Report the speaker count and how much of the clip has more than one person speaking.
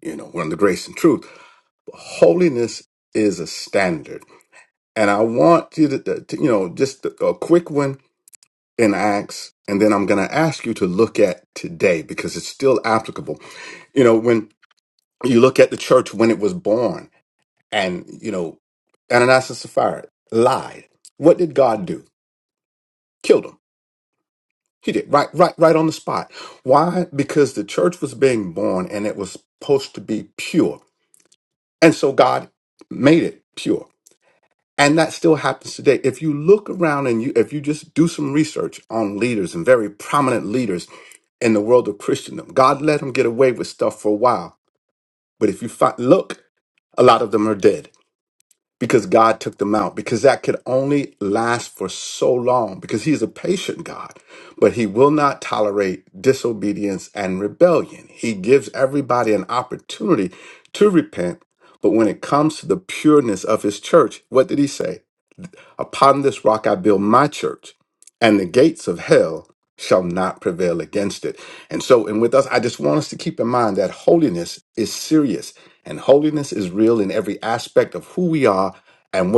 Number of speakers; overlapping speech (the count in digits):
1, no overlap